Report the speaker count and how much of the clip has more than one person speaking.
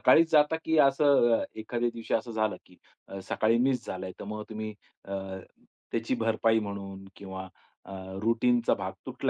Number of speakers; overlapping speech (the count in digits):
1, no overlap